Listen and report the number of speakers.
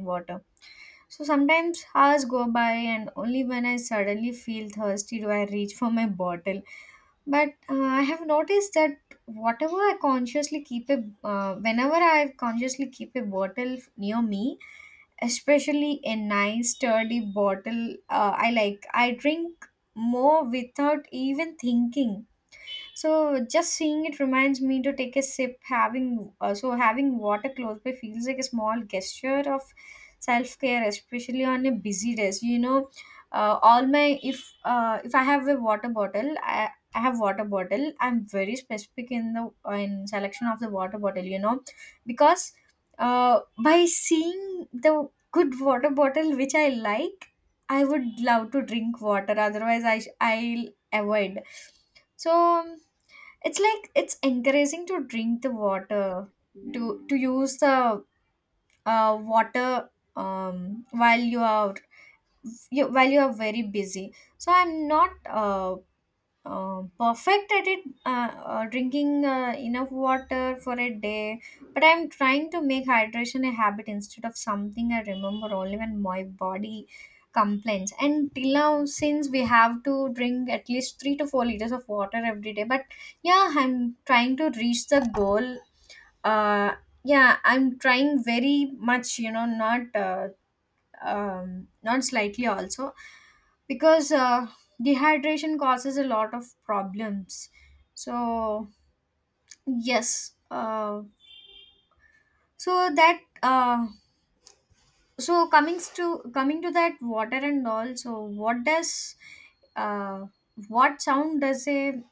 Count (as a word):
one